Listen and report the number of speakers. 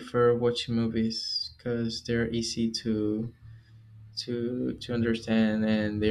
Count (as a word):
one